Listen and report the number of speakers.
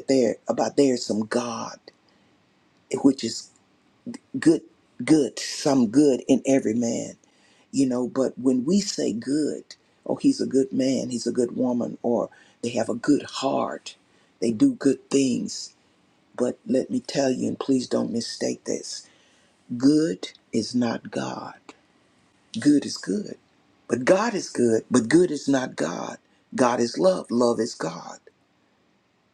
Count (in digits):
1